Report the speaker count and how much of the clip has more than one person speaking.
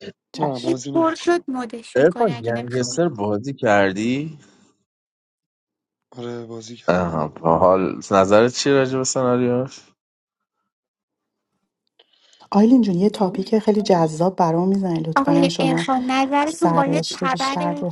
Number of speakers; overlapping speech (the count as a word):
four, about 24%